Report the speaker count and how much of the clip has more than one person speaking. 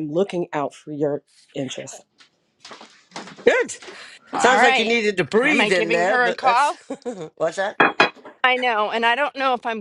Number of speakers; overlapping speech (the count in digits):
3, about 19%